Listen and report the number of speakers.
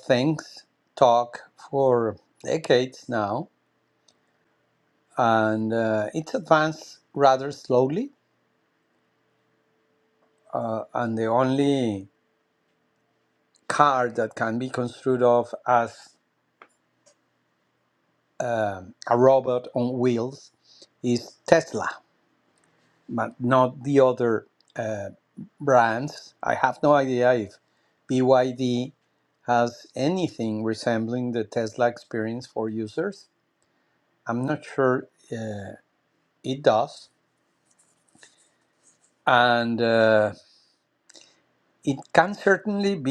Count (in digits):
1